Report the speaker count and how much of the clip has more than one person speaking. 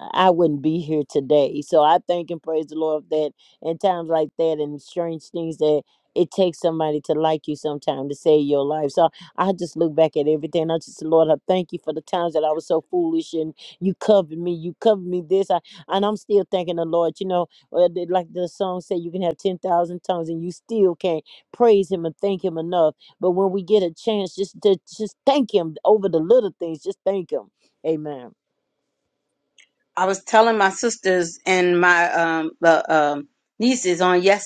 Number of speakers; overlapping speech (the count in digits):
2, no overlap